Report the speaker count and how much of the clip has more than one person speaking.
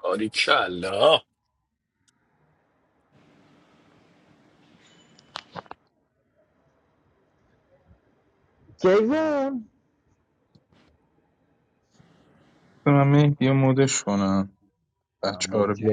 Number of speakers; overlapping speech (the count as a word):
three, about 4%